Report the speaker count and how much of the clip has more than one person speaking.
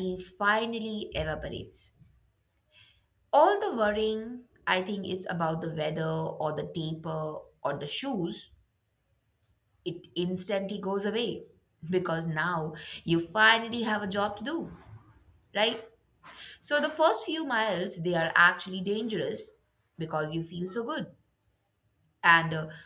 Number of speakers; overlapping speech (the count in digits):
1, no overlap